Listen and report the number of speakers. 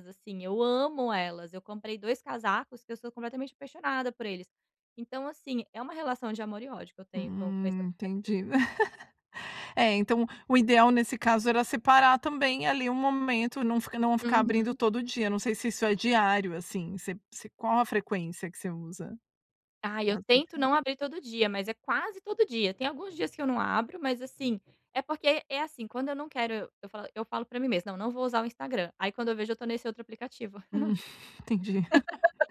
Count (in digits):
2